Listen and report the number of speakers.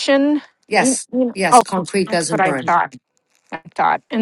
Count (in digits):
2